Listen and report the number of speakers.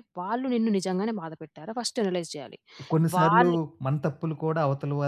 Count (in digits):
2